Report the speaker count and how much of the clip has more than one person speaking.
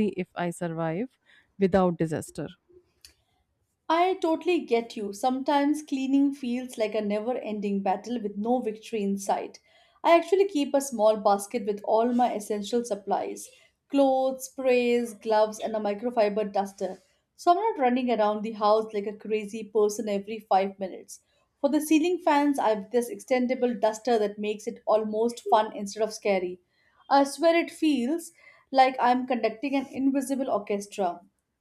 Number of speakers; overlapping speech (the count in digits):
2, no overlap